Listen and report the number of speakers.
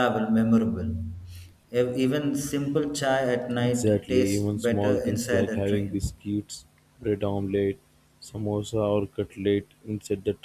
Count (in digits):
2